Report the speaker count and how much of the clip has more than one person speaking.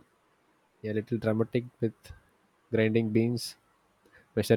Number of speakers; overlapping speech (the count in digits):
1, no overlap